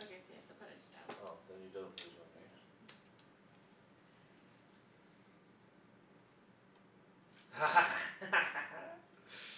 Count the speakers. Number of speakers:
two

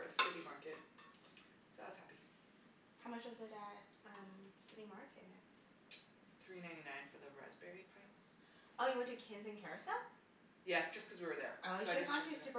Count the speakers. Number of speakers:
two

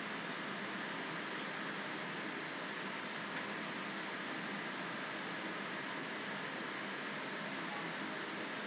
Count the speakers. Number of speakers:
zero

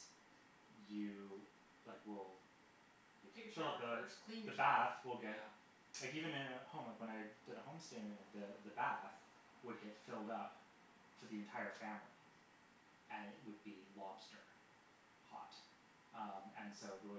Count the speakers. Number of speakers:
two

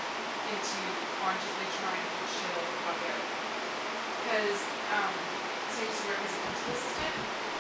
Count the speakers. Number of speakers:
one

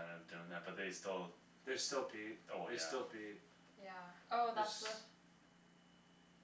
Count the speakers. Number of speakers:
three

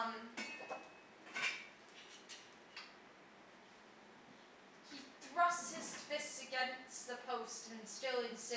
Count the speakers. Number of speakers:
one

